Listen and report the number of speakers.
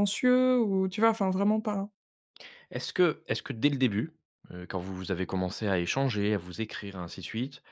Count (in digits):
2